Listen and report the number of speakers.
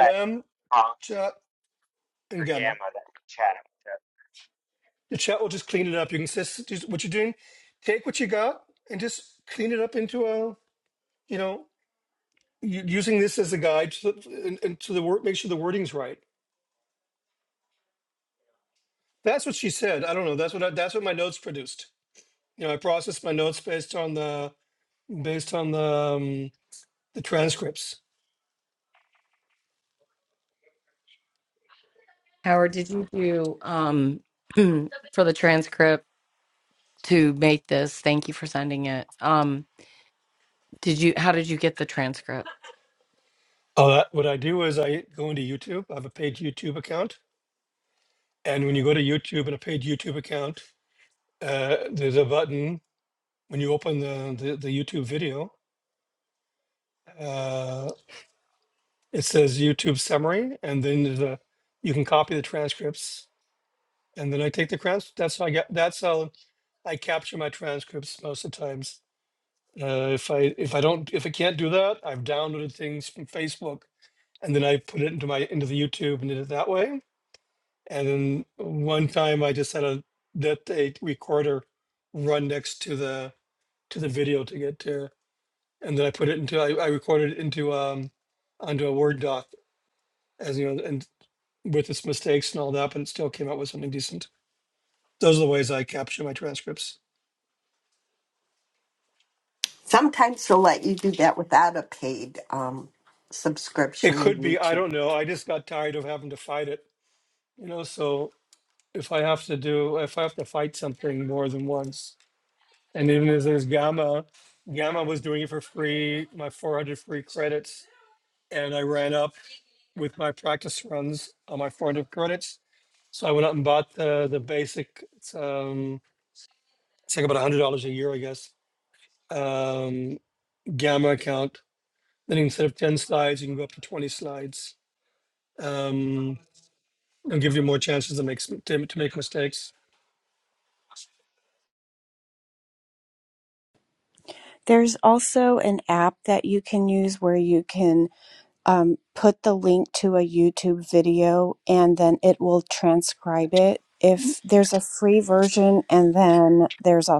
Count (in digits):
5